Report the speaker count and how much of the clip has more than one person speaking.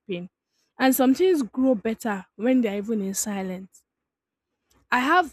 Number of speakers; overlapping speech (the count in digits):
1, no overlap